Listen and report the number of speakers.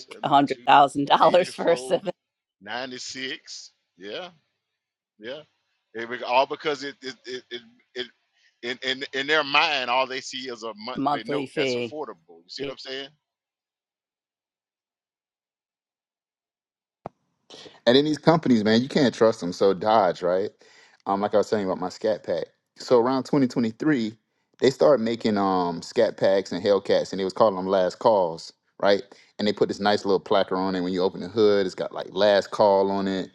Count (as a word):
three